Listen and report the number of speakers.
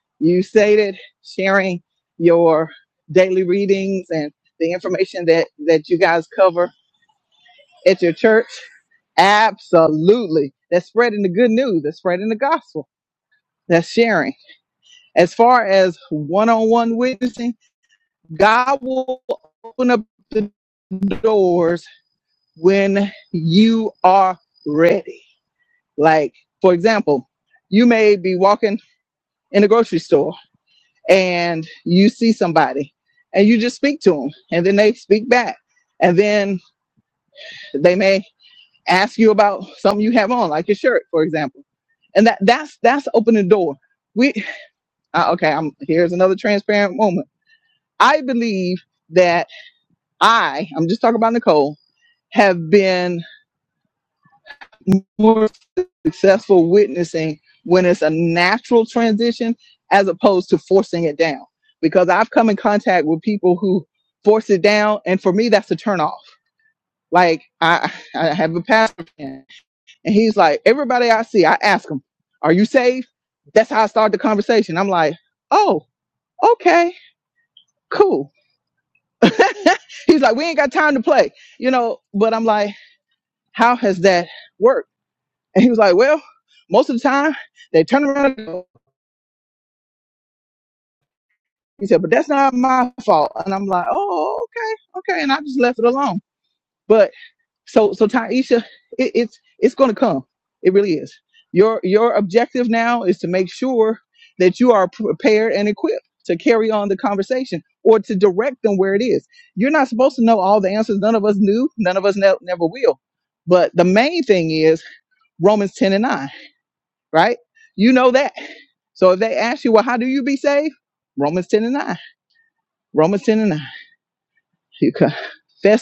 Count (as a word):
one